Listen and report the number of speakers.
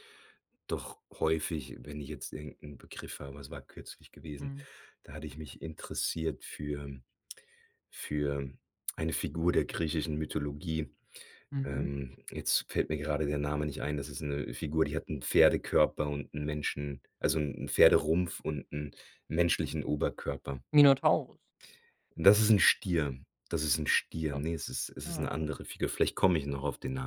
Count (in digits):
2